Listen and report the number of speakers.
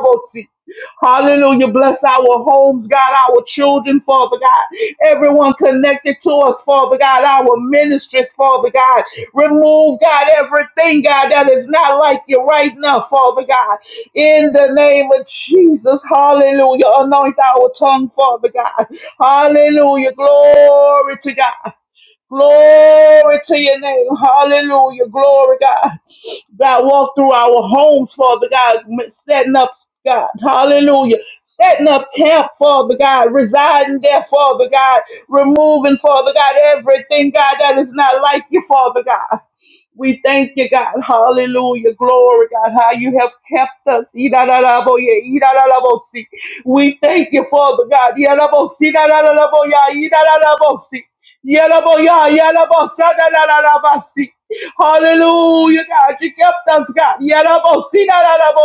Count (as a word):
one